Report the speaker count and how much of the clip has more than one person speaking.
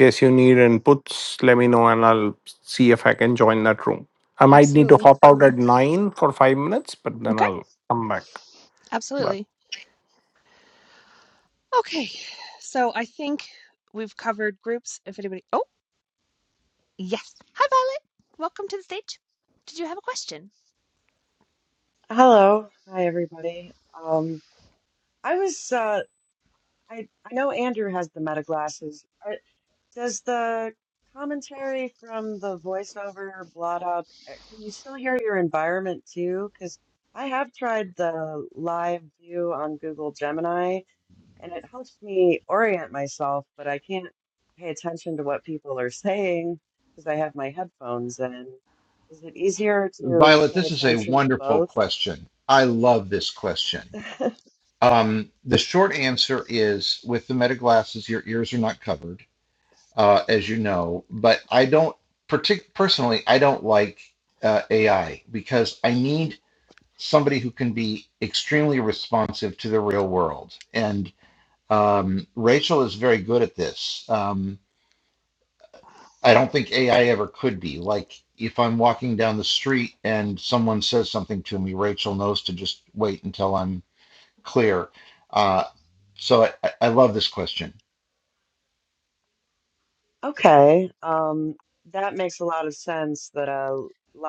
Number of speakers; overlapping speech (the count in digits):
4, about 3%